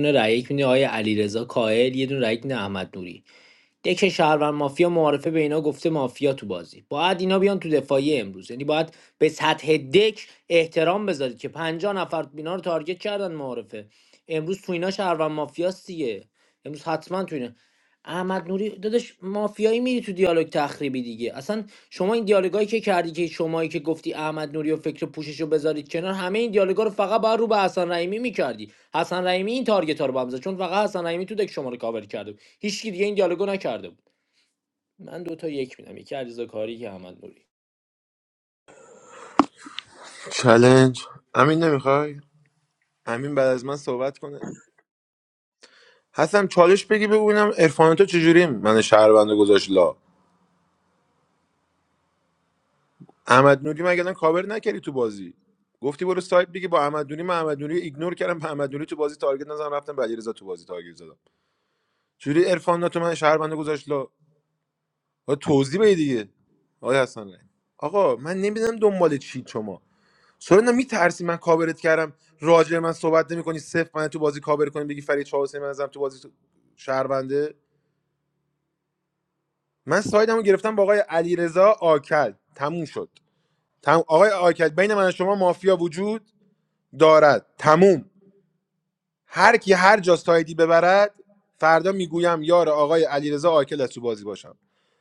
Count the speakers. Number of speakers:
2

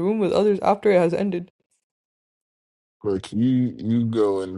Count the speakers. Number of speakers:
2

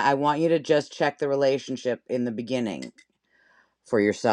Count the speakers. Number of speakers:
1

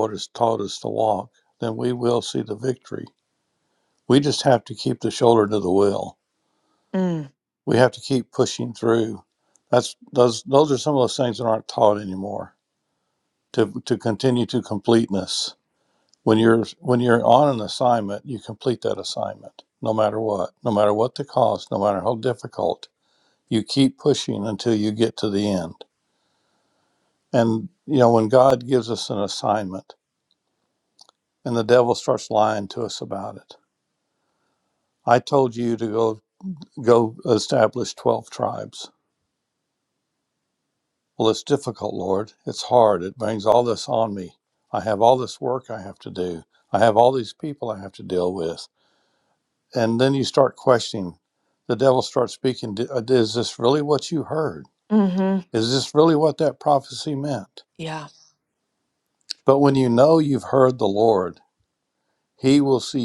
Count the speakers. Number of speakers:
2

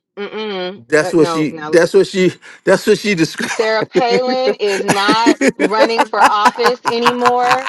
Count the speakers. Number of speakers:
2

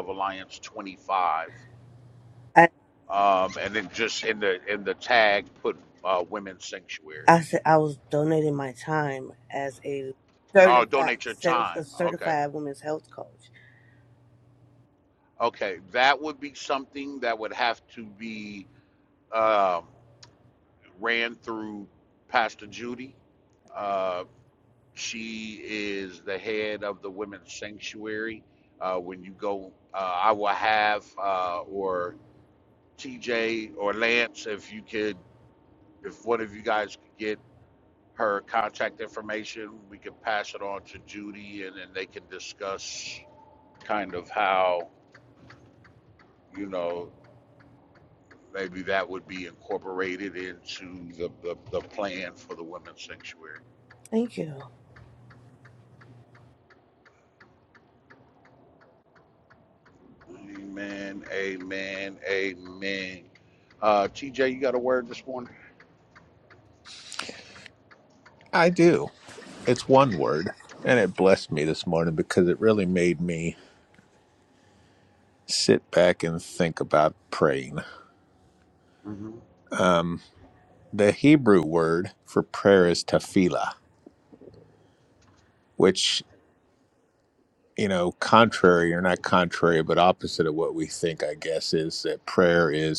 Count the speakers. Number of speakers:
3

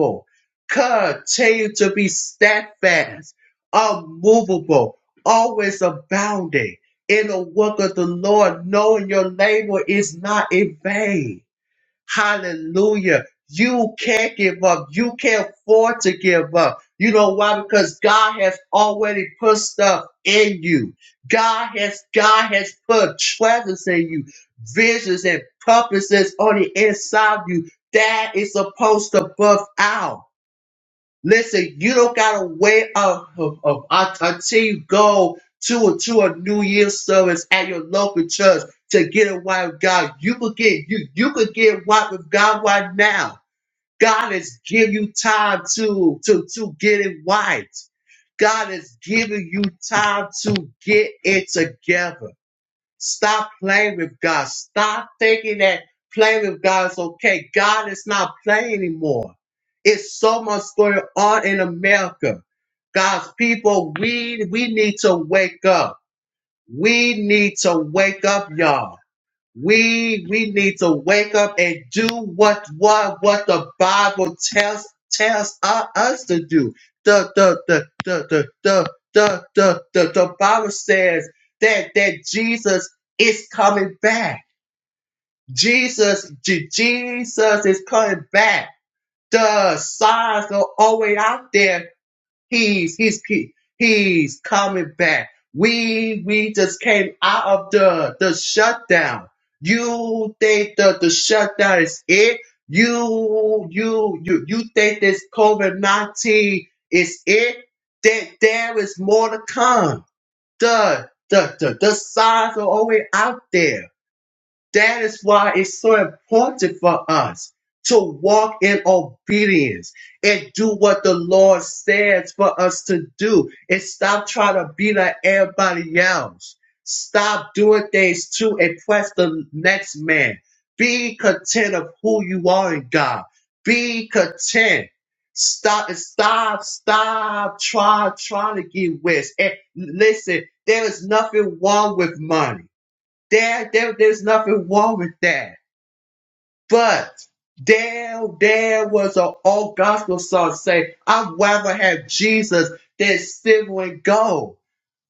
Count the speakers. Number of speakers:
1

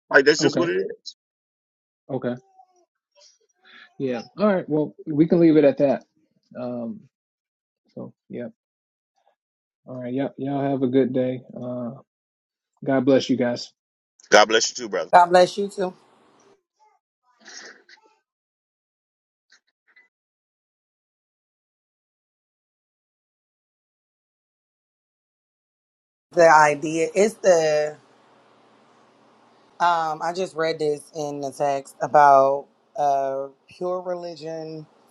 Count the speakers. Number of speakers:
3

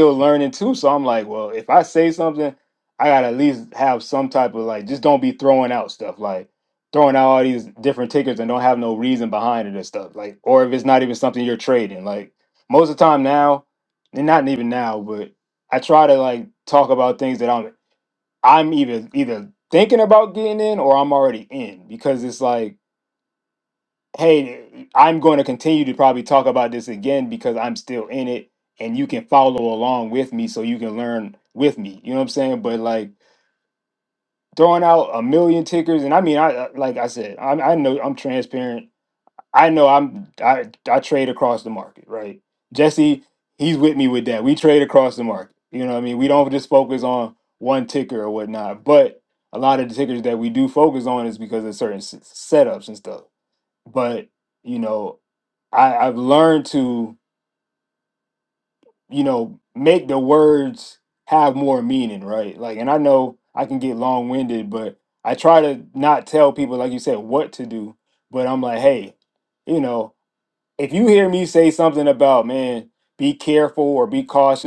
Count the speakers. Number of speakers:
1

